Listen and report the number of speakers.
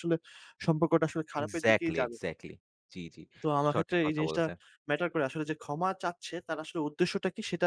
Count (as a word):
two